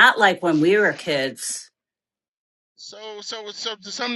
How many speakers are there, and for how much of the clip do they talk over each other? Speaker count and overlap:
2, no overlap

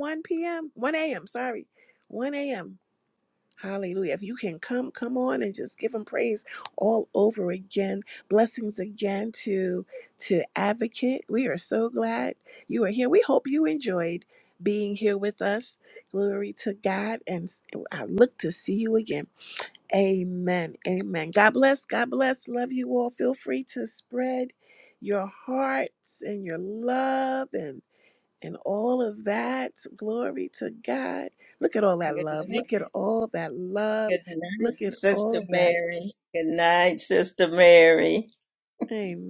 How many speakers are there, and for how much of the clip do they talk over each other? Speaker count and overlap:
2, about 5%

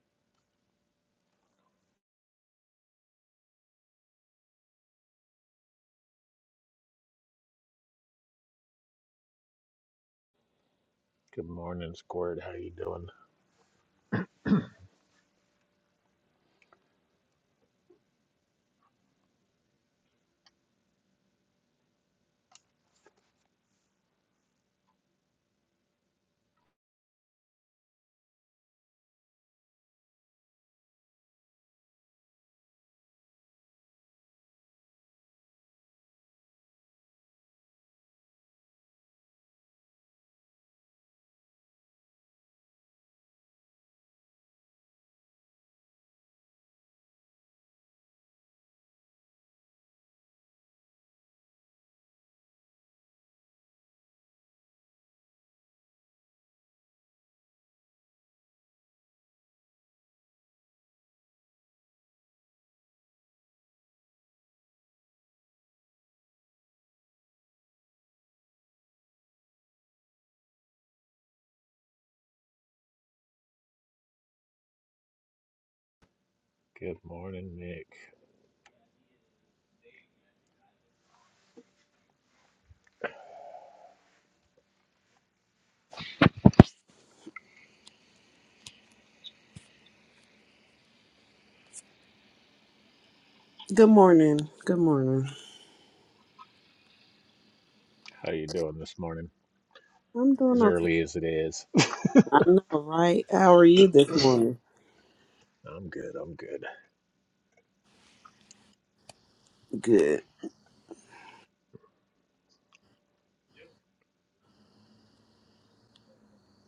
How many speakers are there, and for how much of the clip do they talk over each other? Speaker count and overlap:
2, under 1%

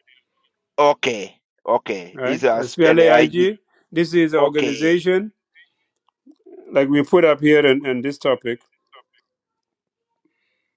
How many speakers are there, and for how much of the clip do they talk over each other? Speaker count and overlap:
2, about 16%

